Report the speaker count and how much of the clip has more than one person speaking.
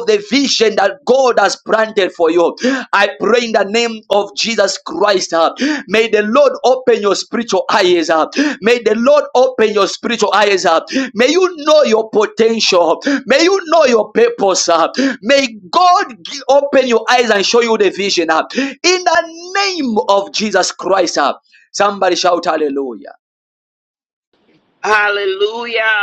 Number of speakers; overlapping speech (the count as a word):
two, no overlap